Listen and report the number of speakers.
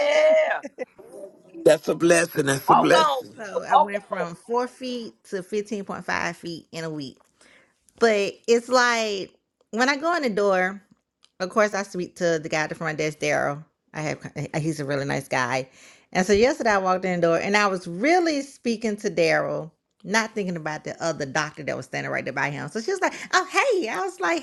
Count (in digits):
3